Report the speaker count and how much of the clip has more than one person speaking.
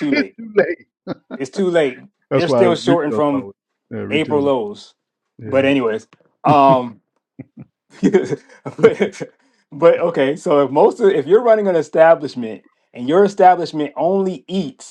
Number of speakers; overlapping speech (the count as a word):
two, about 10%